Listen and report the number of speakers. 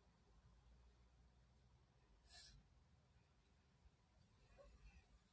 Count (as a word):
zero